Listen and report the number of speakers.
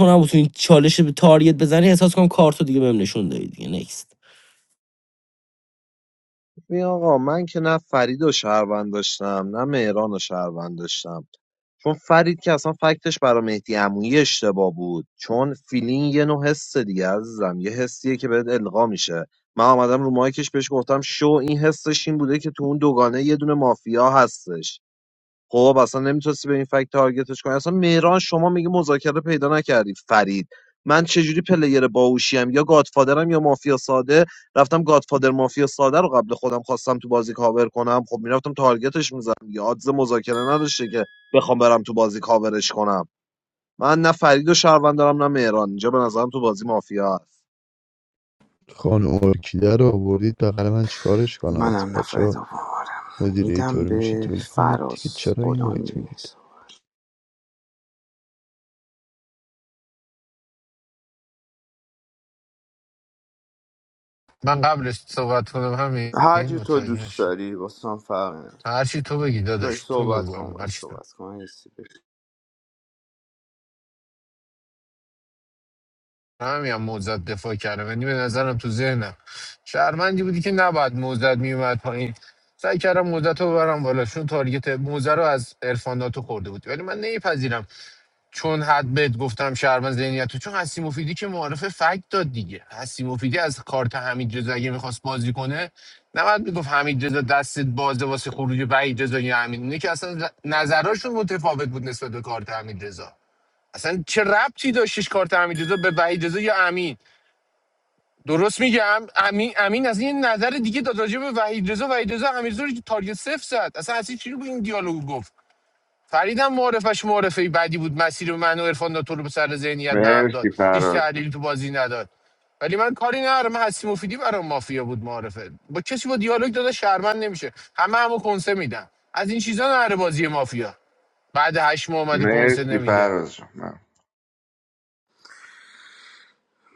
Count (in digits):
6